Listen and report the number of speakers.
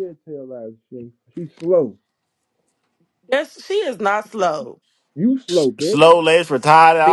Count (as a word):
three